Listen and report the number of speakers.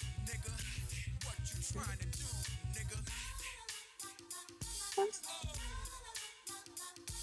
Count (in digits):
0